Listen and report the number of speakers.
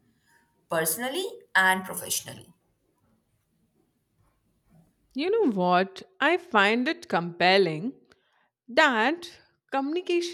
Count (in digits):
2